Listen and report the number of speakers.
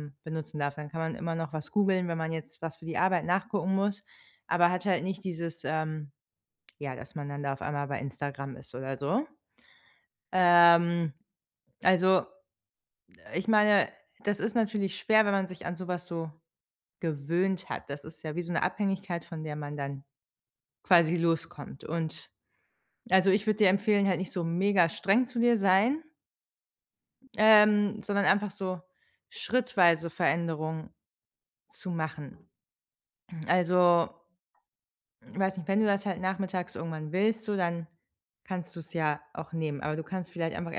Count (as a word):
one